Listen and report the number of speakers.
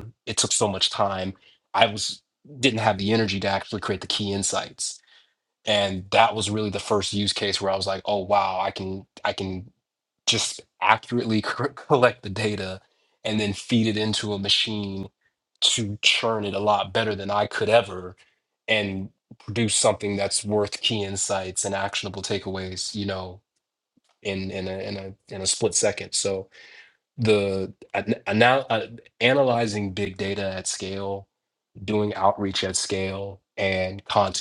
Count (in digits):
1